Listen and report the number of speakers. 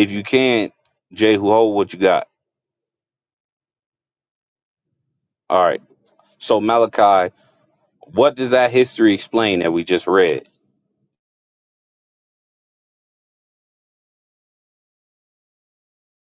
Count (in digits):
1